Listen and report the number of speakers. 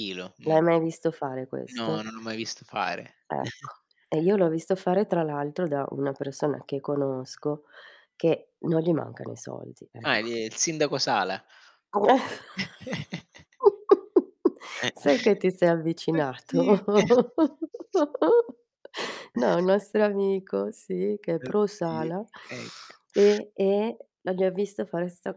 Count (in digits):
2